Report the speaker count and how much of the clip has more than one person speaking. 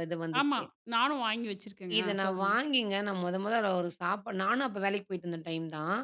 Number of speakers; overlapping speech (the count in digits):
2, about 15%